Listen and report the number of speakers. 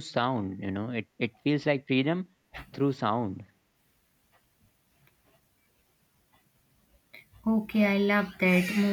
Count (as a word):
two